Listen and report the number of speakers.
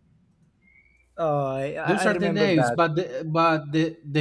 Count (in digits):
2